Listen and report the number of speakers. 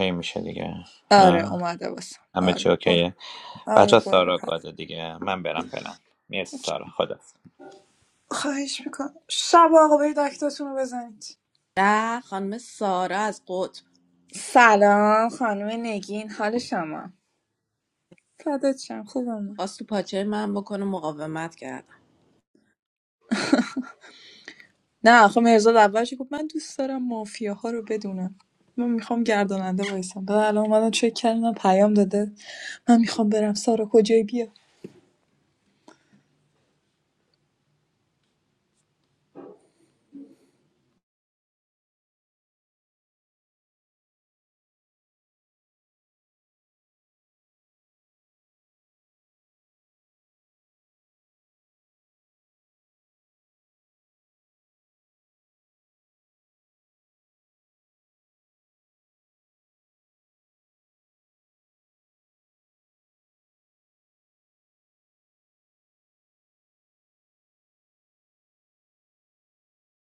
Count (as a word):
three